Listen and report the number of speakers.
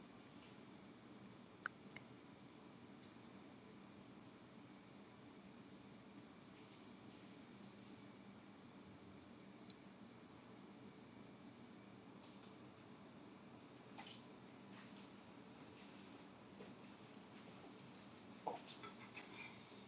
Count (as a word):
zero